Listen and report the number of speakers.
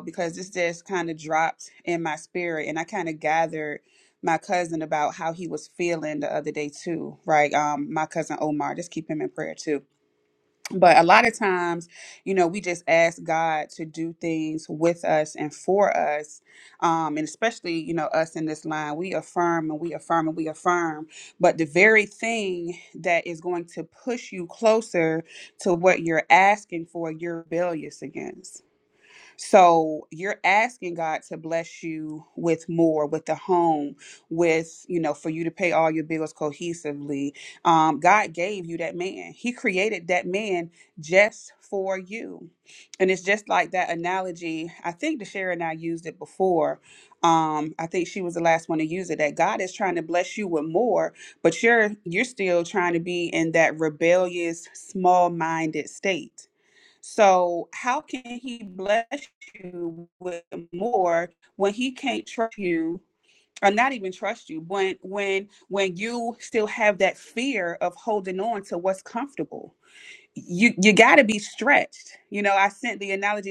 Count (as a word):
one